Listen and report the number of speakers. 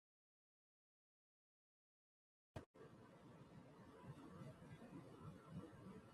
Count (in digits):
0